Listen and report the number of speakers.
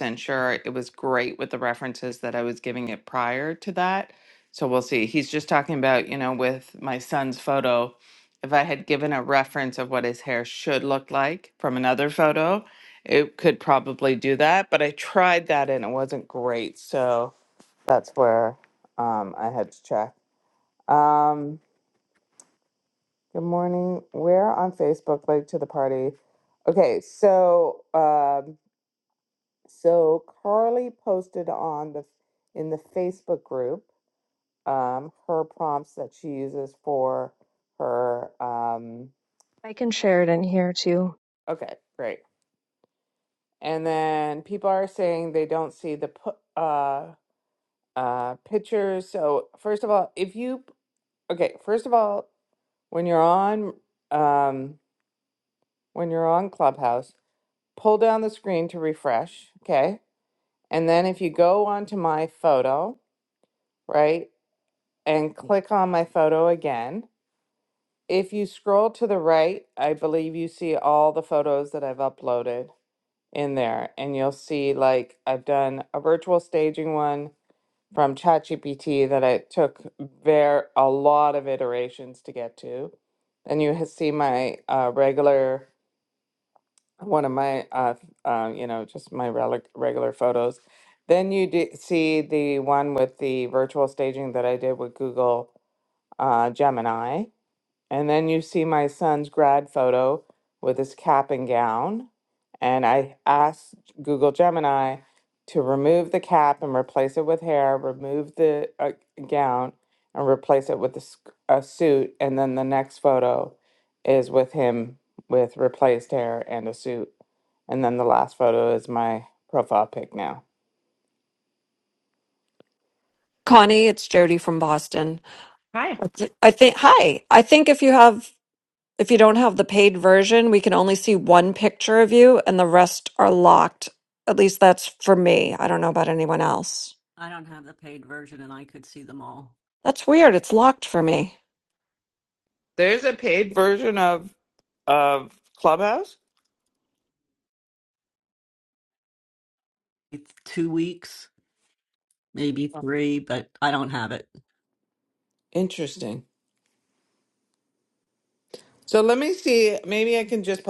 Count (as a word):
four